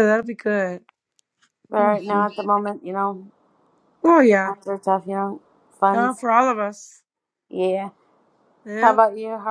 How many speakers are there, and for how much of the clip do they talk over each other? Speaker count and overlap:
two, about 10%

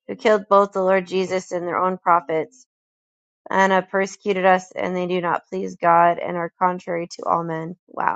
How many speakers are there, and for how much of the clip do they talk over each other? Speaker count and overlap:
one, no overlap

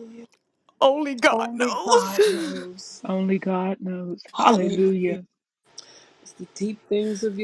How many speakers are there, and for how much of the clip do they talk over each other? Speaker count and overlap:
three, about 24%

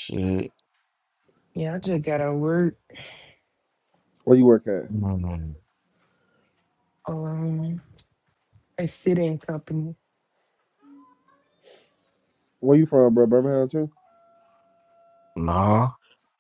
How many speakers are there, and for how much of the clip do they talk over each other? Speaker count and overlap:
three, no overlap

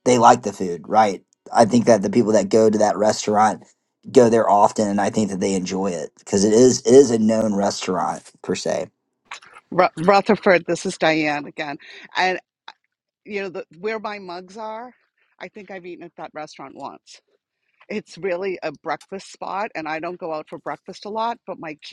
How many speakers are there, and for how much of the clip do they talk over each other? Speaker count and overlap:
two, no overlap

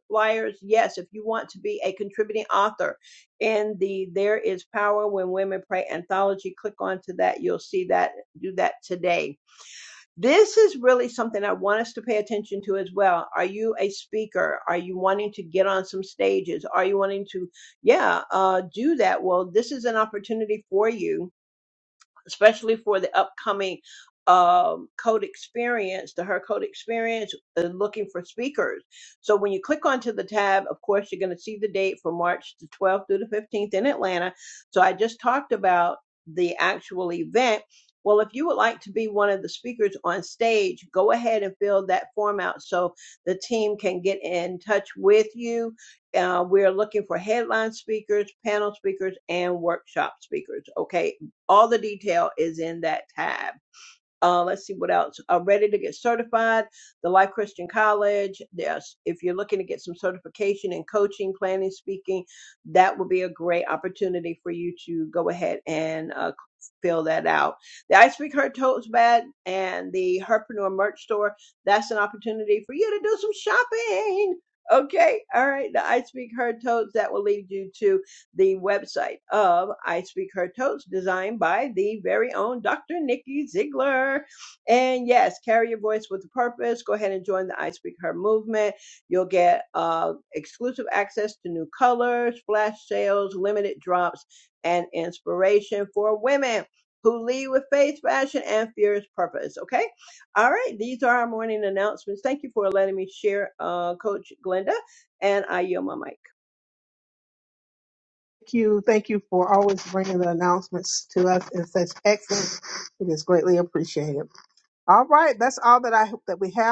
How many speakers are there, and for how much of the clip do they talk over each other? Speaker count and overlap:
two, no overlap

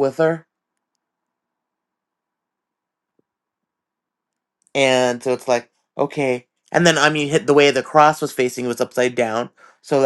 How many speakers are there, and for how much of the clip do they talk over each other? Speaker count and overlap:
one, no overlap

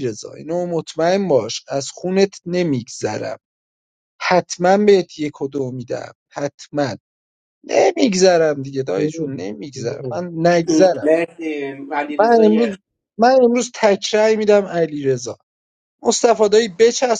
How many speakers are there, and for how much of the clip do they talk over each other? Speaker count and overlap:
two, about 3%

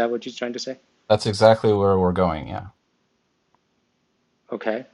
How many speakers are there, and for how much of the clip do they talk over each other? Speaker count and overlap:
two, no overlap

